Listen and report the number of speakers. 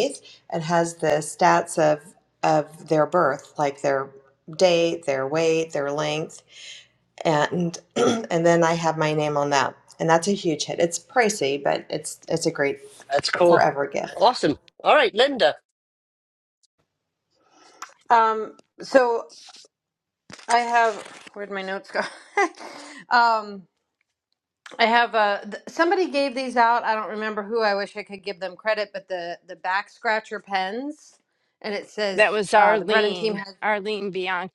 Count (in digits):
4